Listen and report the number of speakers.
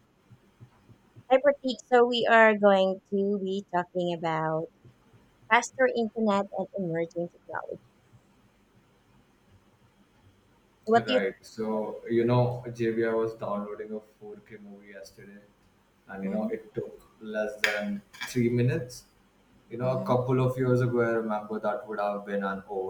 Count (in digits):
2